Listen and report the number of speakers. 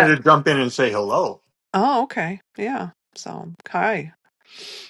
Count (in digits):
2